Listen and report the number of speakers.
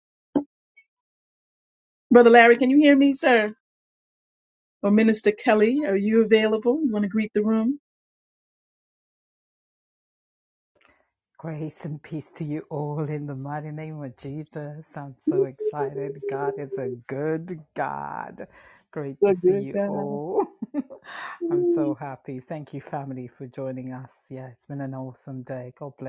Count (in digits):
2